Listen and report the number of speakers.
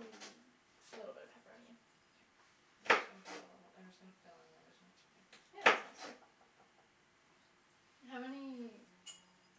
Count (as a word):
two